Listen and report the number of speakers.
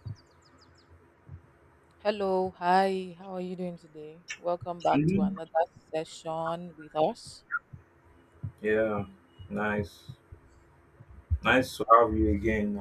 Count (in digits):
2